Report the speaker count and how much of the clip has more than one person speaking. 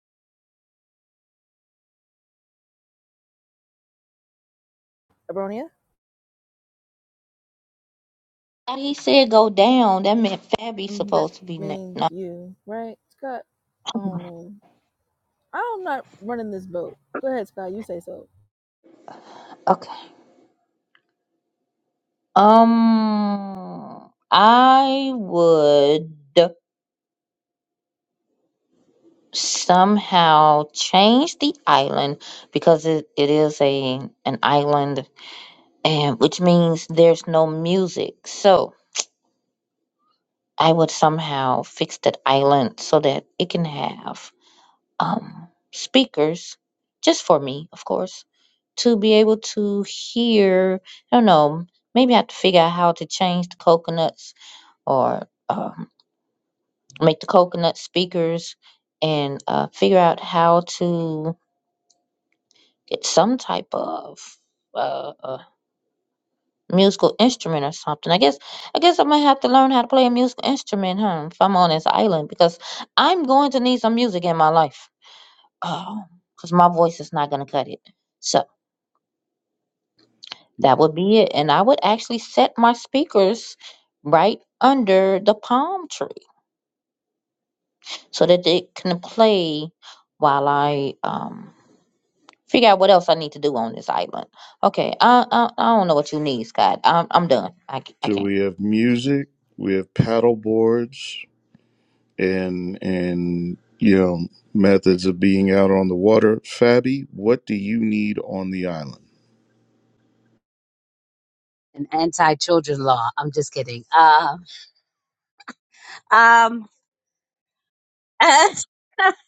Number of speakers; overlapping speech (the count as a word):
four, about 1%